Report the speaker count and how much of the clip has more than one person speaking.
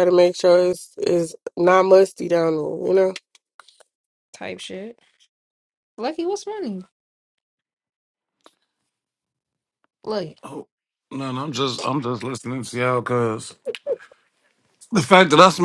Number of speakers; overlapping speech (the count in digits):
3, no overlap